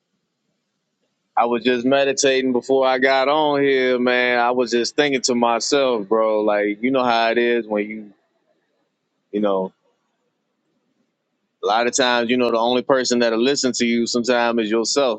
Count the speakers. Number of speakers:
one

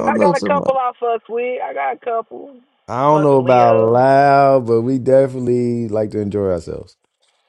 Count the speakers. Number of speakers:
two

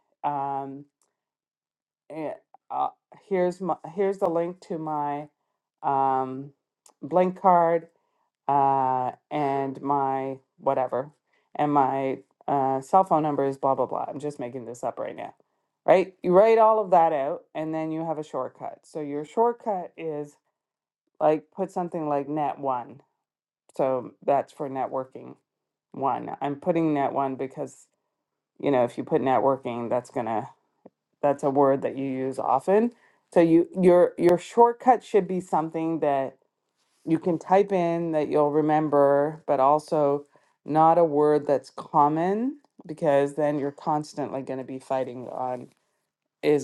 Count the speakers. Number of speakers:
one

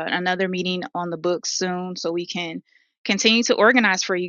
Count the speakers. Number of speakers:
one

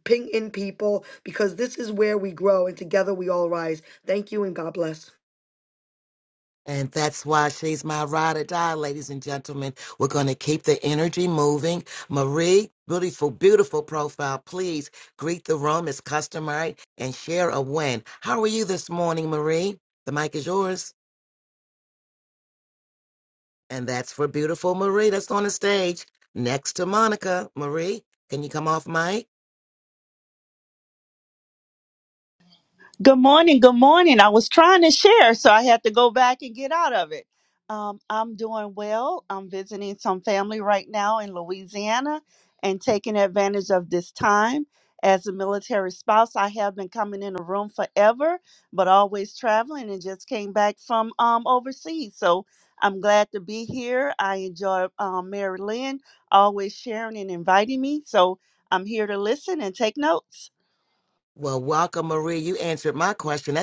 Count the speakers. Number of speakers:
three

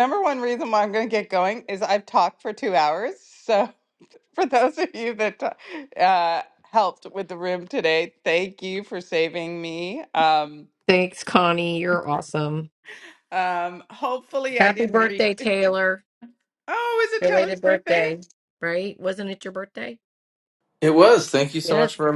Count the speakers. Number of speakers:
three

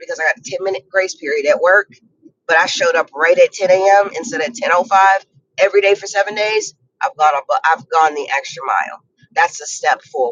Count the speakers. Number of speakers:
one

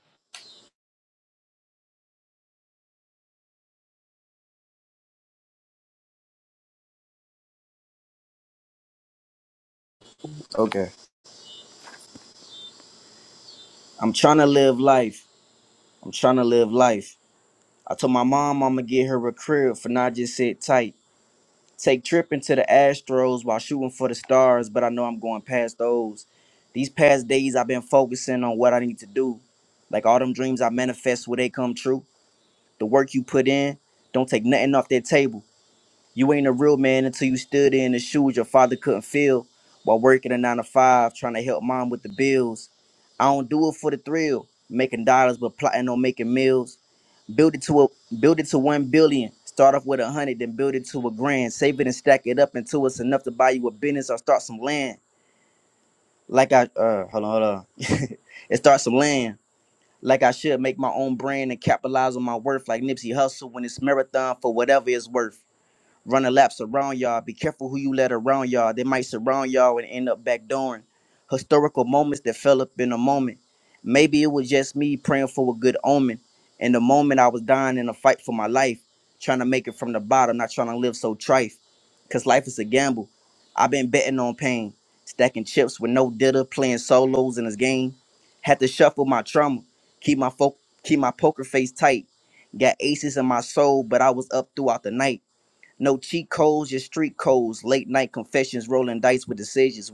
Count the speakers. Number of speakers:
one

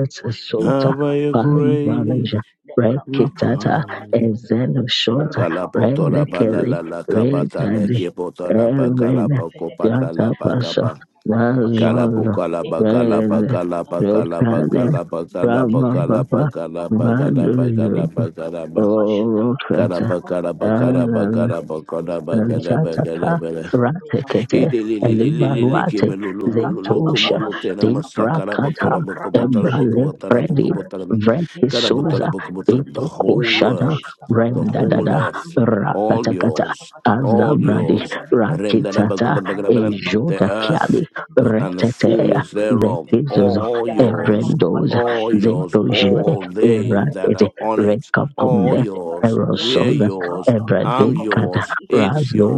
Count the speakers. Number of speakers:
three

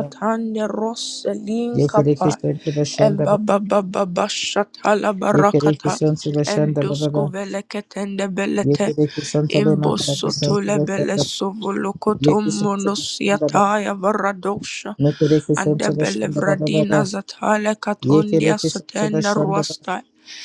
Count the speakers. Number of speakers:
two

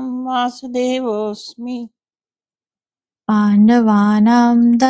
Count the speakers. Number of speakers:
two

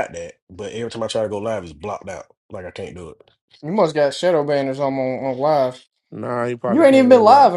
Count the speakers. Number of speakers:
three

